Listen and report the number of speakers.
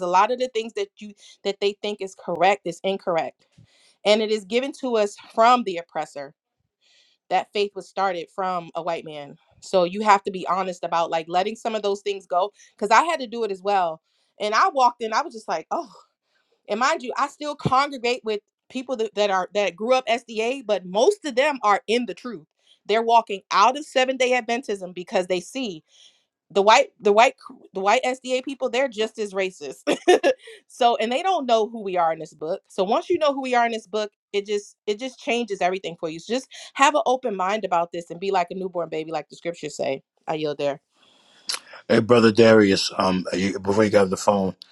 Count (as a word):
two